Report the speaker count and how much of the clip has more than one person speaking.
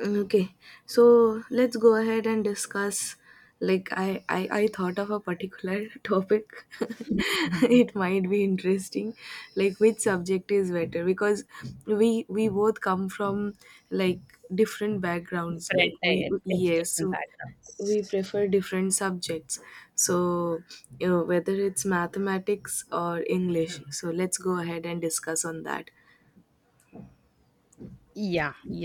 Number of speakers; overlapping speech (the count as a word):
two, about 5%